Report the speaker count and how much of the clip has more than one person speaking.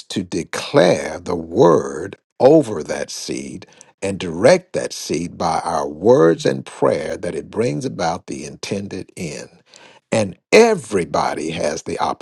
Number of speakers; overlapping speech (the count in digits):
1, no overlap